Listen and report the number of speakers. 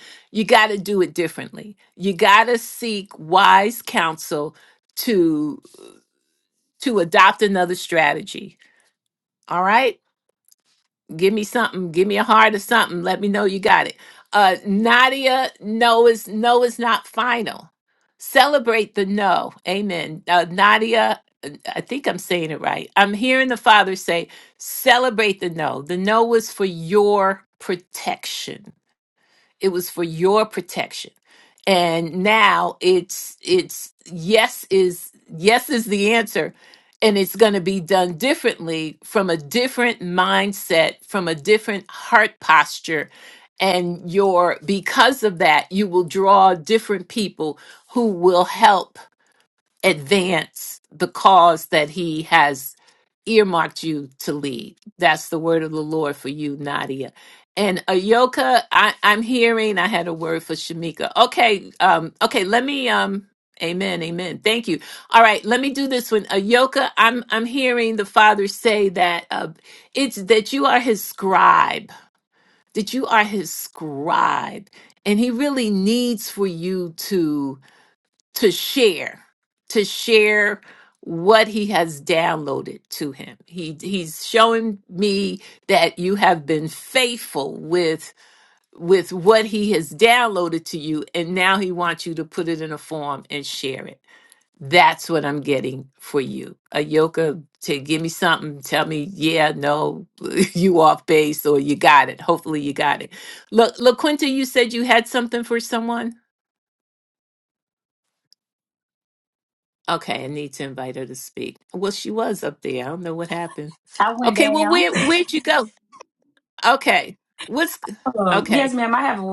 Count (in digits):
2